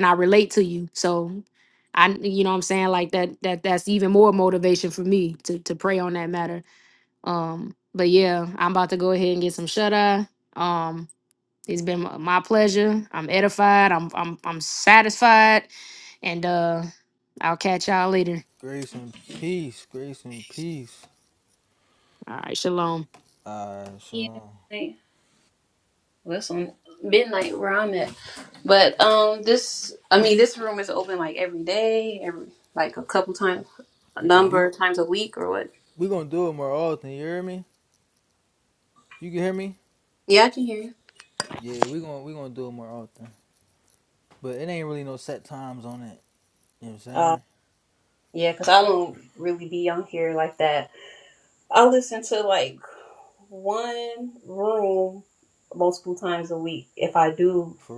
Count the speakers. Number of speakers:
three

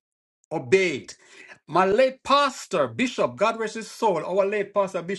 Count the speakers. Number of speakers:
one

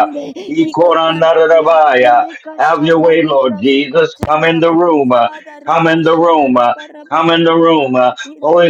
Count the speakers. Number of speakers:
two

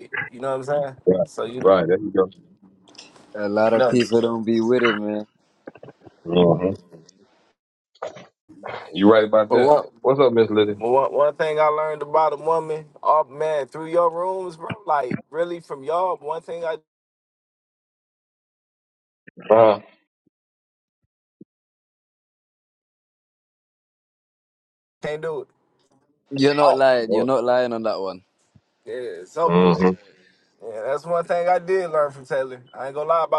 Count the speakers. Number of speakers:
three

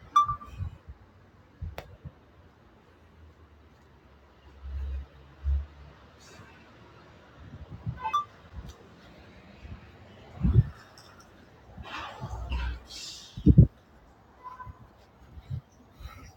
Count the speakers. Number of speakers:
zero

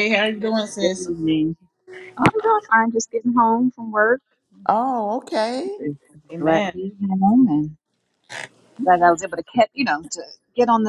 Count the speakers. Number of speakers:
three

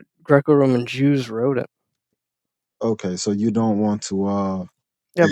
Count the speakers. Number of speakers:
two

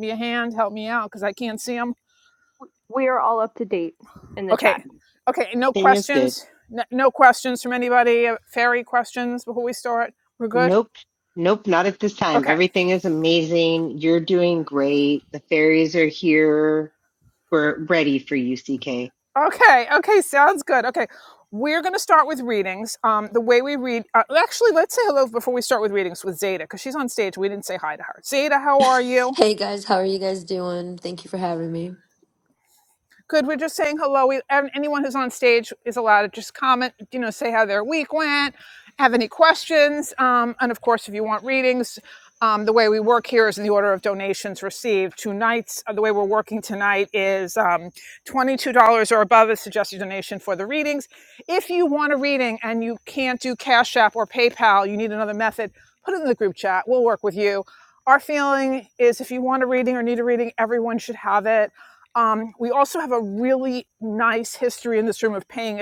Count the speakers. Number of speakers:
four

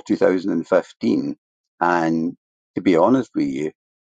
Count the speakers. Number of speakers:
one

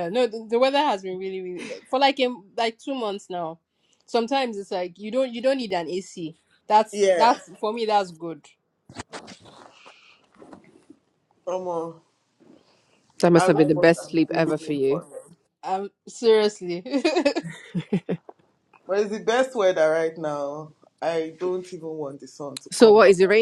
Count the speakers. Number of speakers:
three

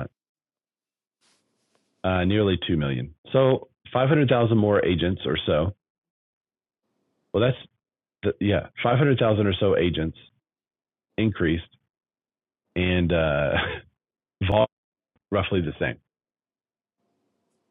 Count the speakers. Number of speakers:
one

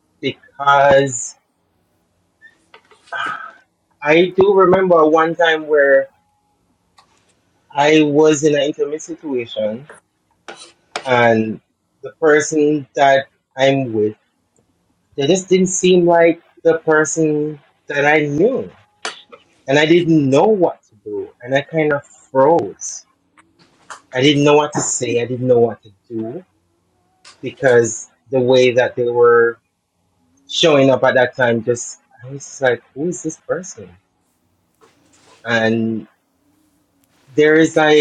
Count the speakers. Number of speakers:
one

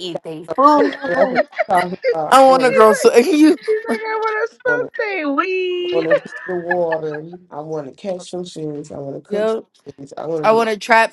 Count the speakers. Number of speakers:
three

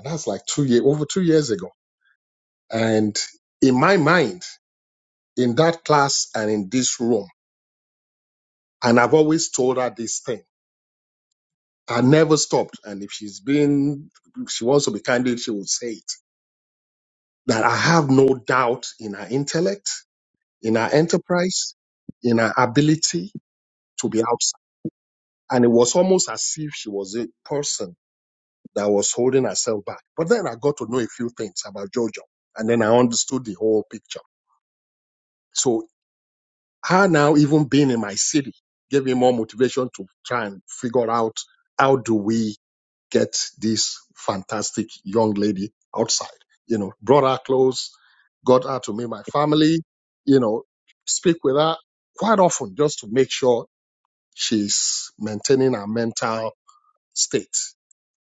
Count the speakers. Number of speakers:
one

